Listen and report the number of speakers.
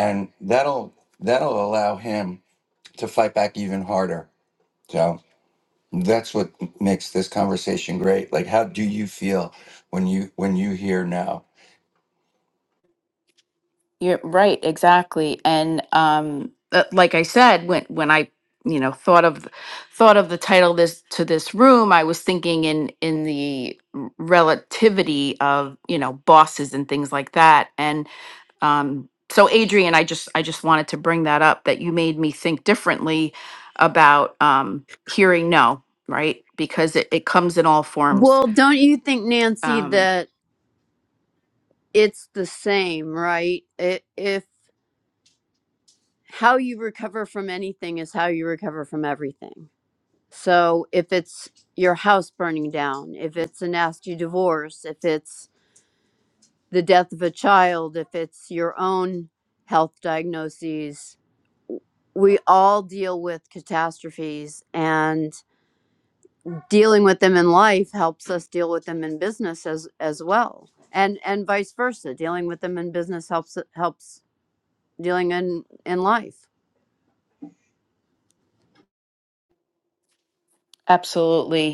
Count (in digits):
3